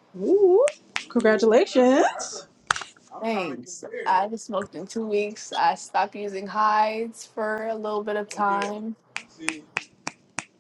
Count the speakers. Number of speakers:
three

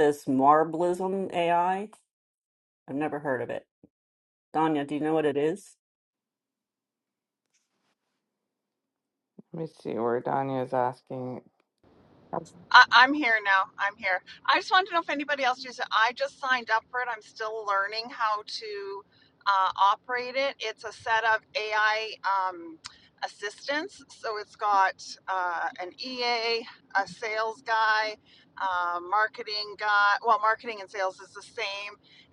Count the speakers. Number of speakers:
three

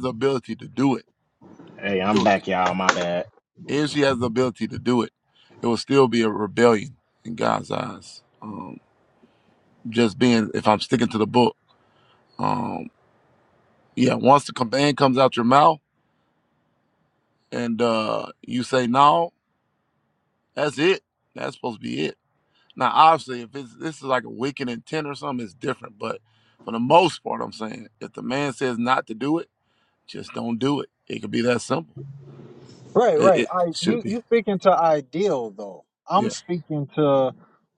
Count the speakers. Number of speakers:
three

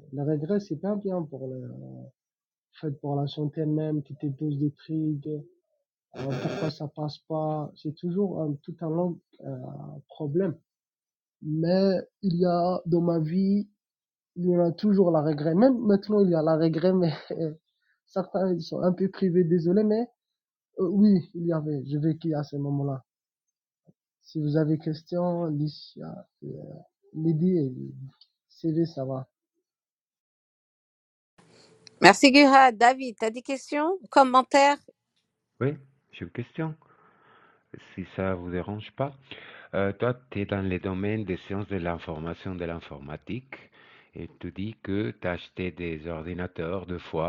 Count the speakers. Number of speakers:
three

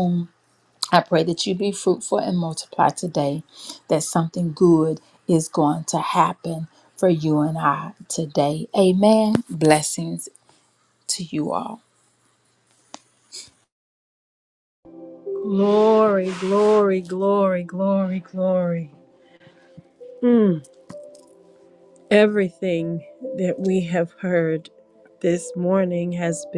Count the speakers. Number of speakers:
two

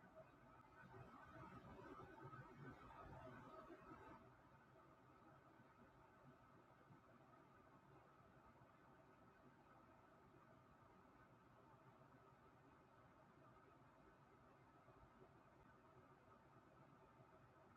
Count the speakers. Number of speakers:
zero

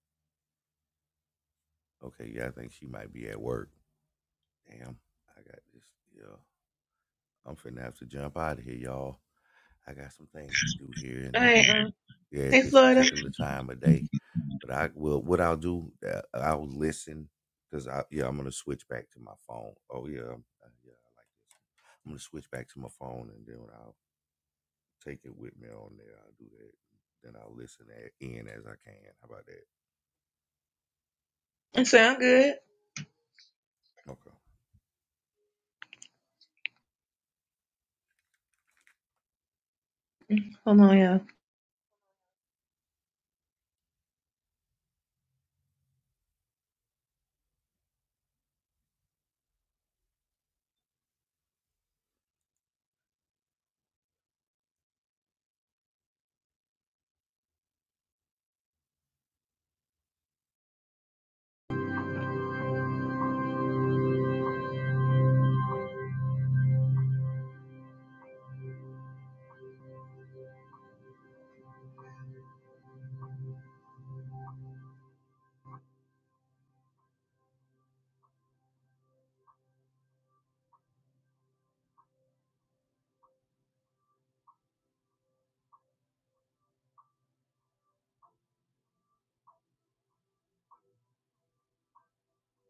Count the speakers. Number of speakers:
two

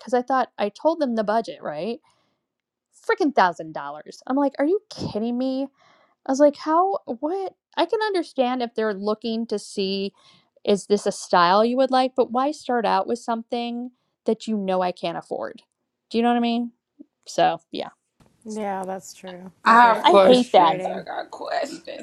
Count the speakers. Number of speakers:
three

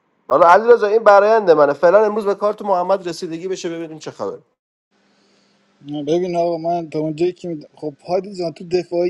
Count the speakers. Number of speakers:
two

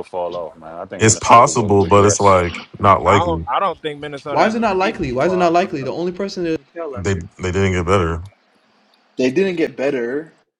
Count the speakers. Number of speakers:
four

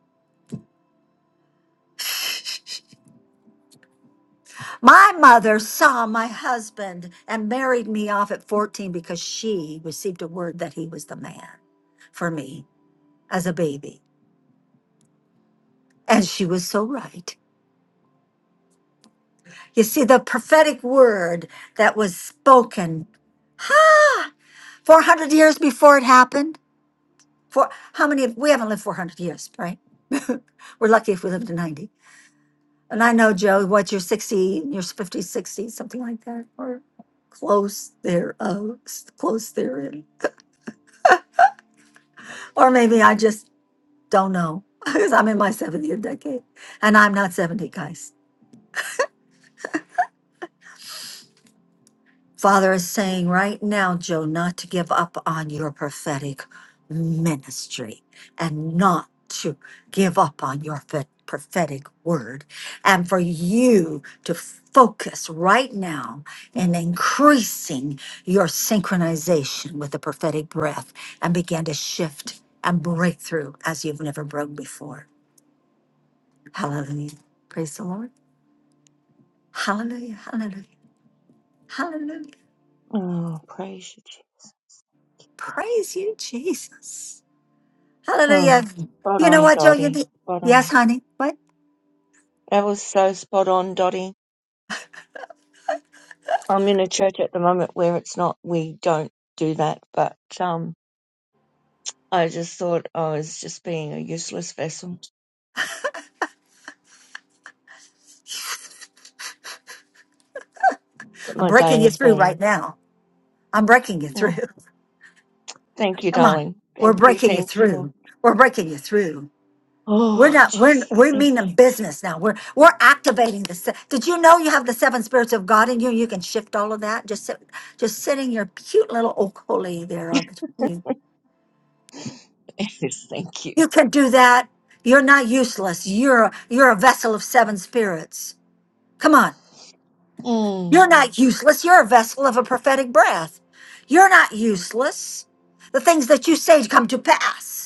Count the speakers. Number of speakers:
two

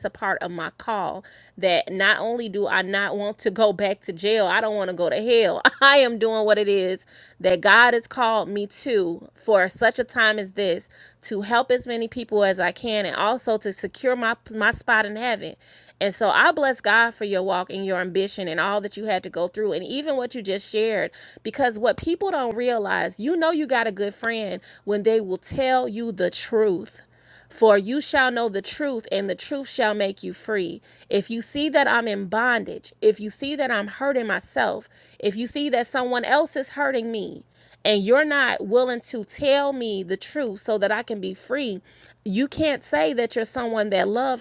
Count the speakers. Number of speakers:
one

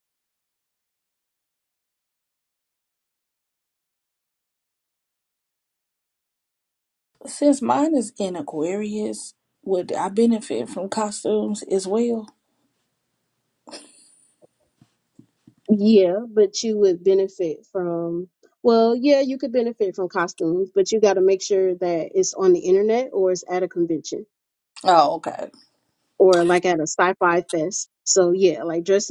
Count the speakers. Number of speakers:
two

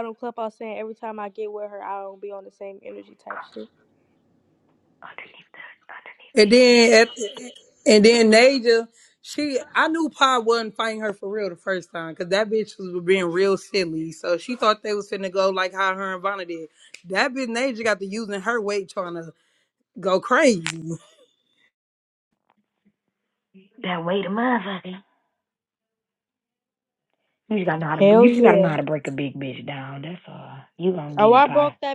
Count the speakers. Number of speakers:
three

